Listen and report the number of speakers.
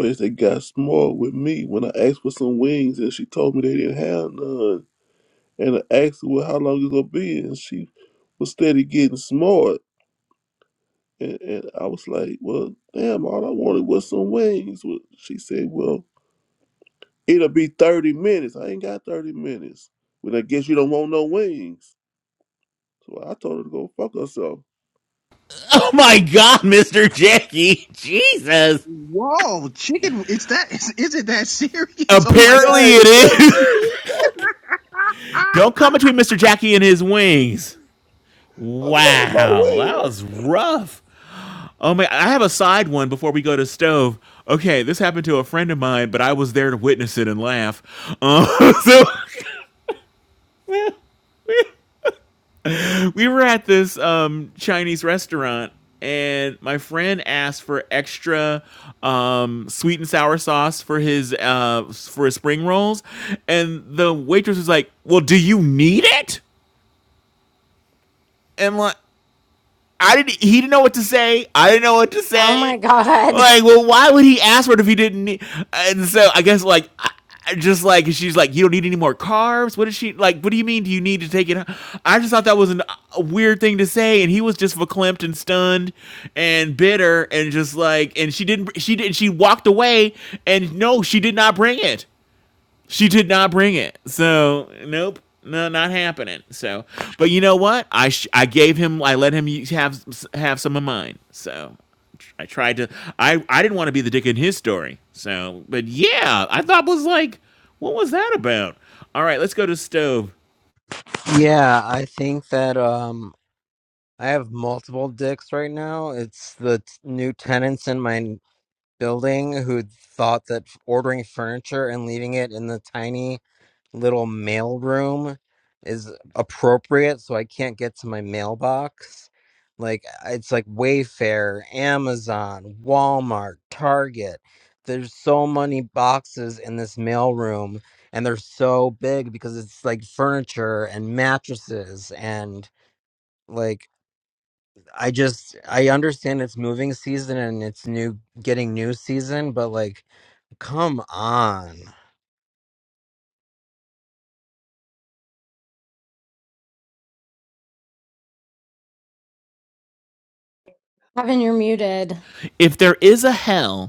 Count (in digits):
5